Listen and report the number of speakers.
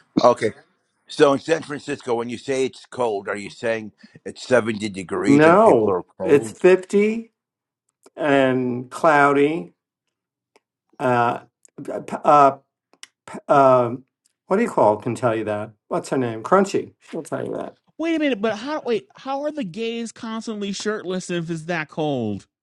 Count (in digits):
3